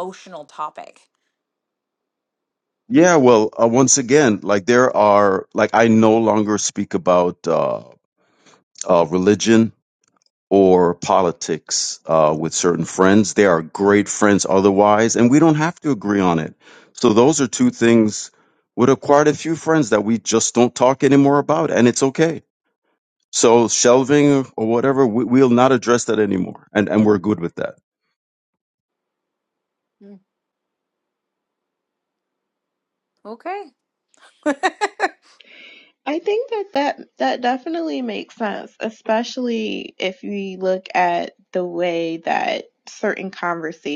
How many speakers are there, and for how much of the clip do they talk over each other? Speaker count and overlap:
3, no overlap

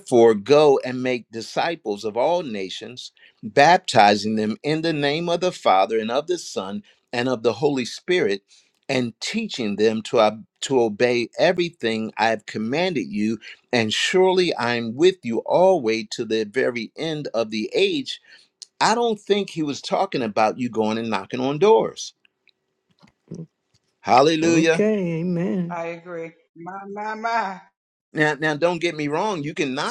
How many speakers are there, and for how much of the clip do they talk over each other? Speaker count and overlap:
3, about 1%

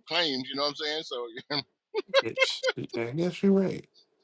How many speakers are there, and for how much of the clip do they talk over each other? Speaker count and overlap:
2, no overlap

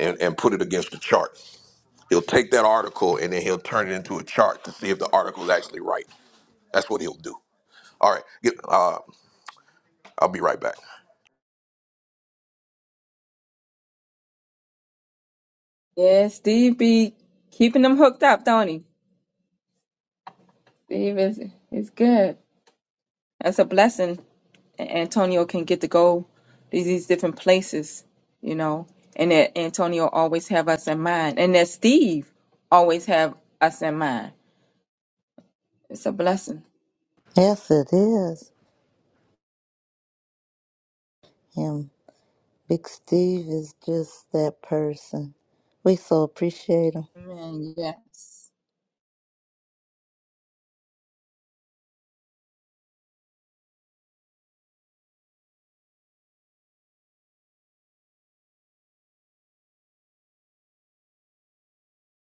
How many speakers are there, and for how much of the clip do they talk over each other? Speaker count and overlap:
3, no overlap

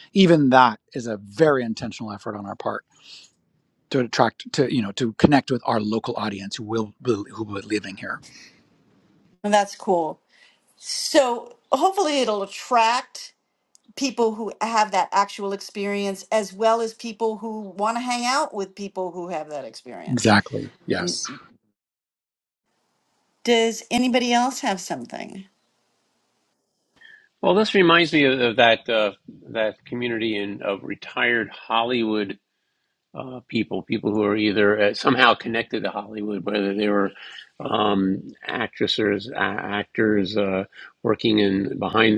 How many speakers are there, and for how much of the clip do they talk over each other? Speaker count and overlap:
3, about 1%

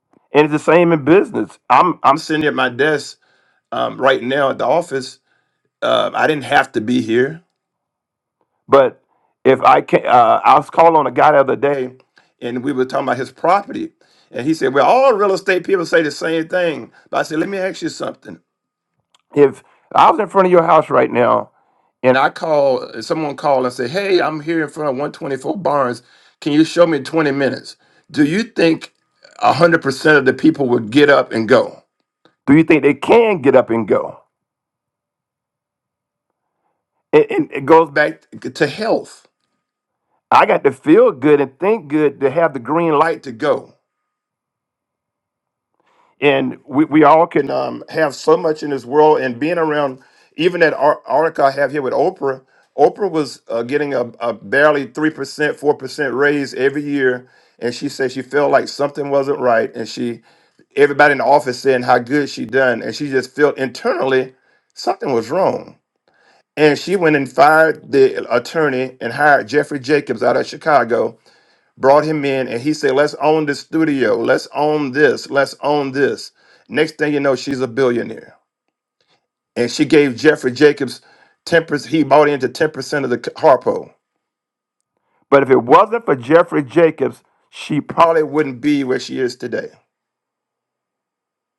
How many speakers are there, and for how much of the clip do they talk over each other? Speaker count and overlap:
1, no overlap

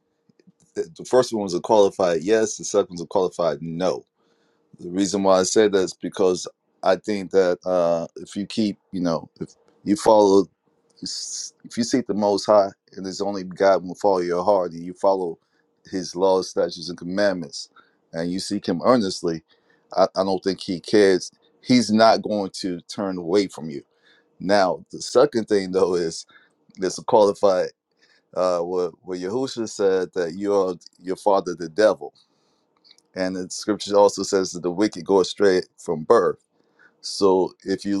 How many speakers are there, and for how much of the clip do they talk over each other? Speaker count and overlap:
1, no overlap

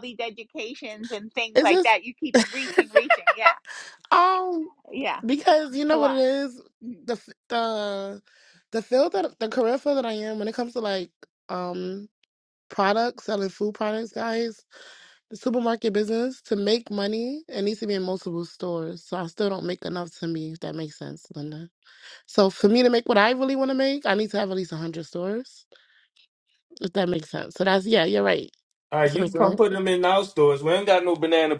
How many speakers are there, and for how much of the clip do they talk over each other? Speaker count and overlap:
3, about 4%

